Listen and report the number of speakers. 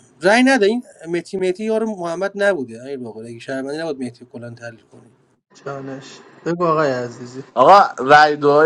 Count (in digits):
3